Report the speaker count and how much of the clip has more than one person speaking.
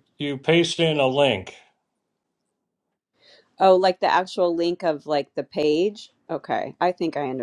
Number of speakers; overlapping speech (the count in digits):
2, no overlap